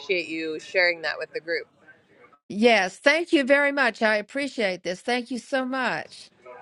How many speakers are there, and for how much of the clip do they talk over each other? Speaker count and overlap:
2, no overlap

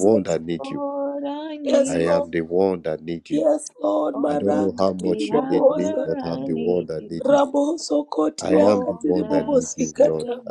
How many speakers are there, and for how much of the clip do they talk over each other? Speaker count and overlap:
3, about 62%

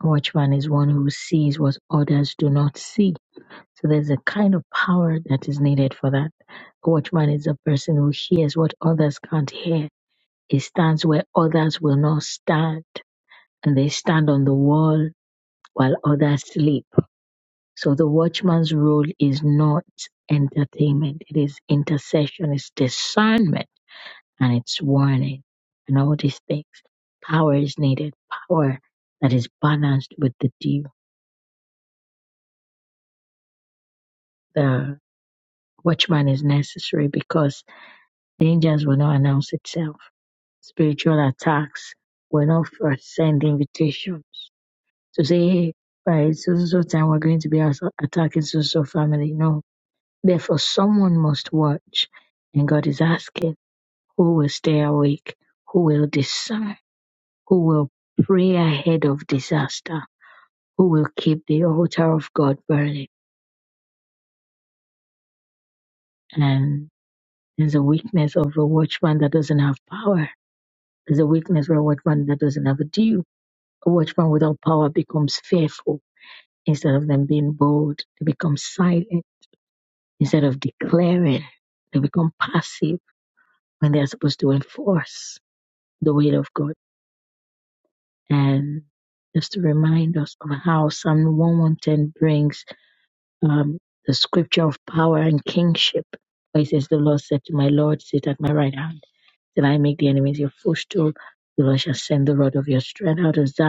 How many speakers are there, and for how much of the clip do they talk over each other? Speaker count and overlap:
1, no overlap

